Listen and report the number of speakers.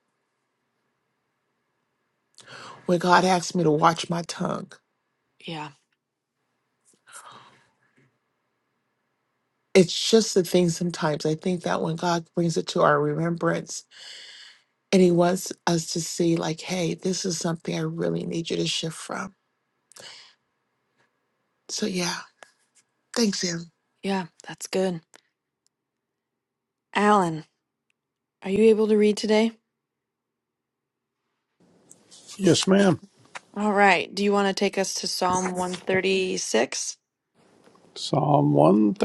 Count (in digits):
3